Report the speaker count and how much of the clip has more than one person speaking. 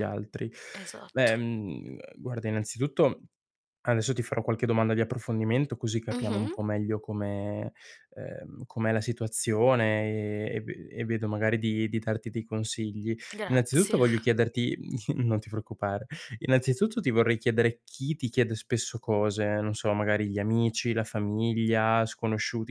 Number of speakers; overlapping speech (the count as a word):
two, about 7%